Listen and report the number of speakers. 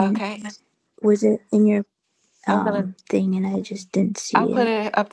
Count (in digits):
2